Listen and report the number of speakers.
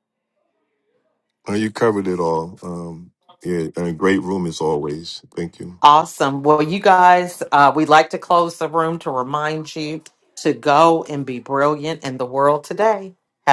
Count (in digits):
2